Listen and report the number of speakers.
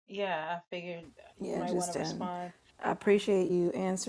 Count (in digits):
2